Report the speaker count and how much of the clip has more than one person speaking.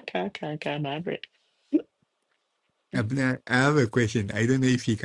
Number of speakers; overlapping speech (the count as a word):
two, no overlap